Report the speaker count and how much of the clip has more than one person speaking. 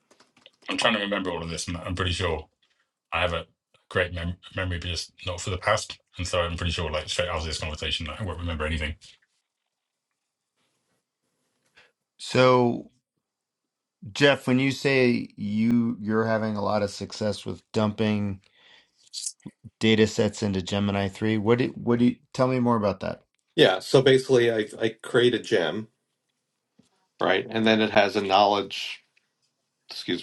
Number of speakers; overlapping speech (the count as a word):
three, no overlap